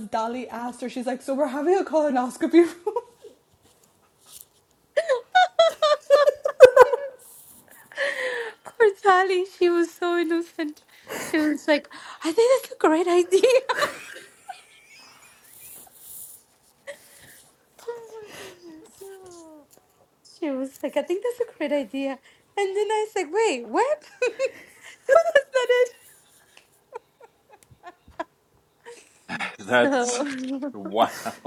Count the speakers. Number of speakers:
three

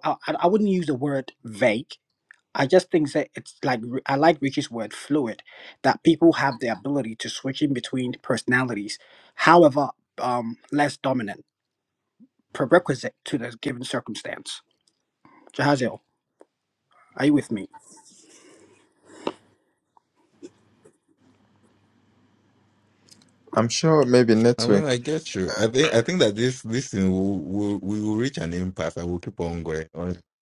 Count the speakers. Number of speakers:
three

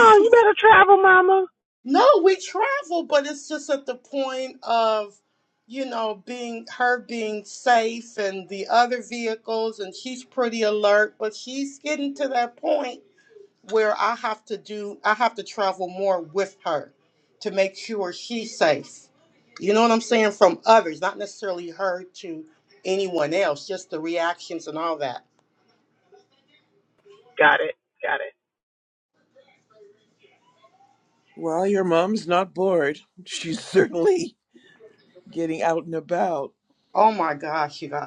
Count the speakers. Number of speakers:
three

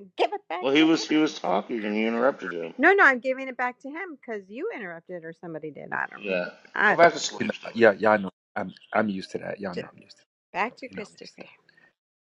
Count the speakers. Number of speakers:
three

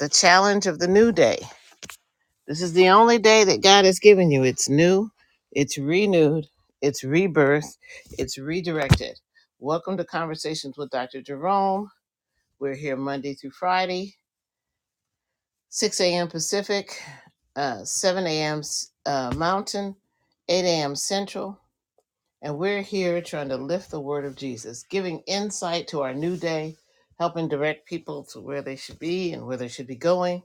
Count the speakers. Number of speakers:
one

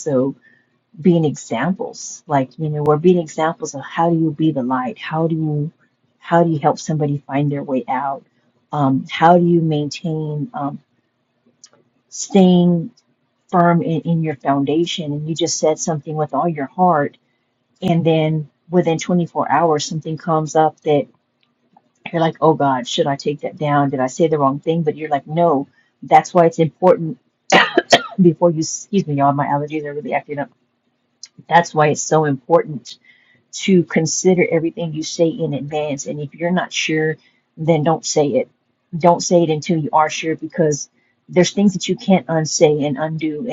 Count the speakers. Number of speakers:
one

